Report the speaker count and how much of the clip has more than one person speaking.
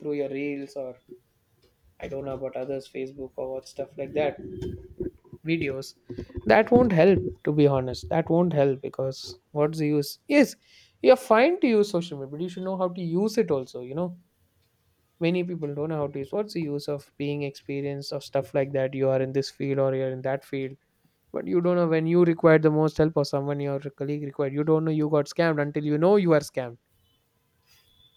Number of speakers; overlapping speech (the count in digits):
1, no overlap